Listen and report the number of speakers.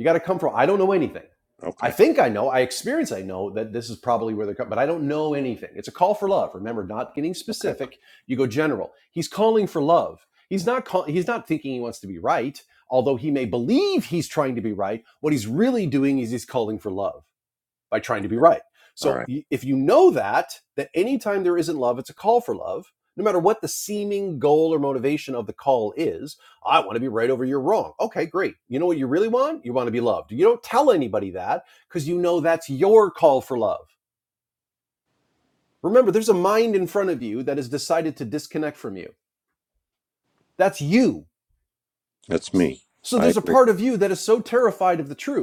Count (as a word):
two